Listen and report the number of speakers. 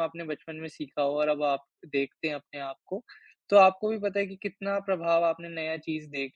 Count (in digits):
1